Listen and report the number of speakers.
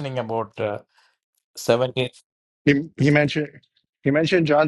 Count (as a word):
two